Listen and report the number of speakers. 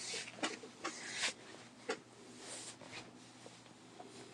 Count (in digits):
0